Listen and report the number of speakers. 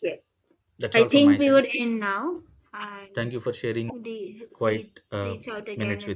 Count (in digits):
2